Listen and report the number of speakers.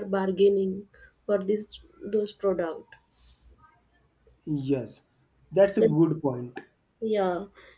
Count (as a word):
two